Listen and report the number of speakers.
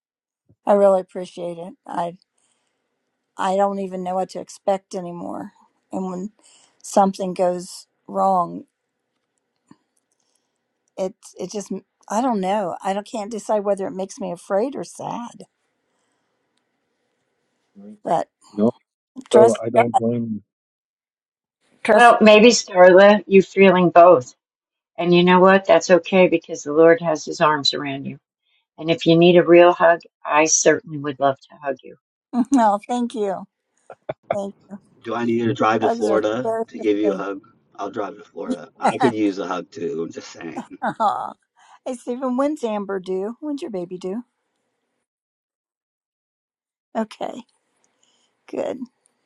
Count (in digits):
4